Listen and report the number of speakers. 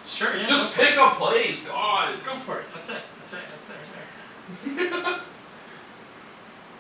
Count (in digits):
2